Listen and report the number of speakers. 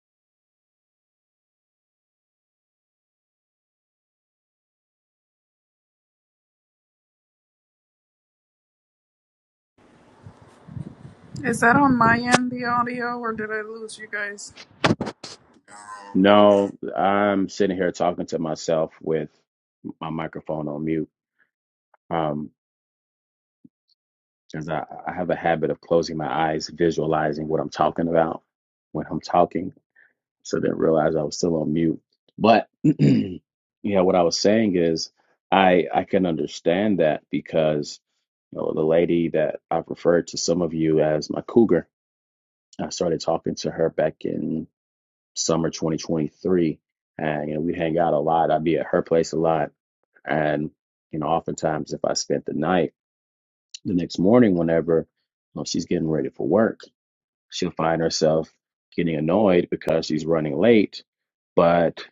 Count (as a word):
two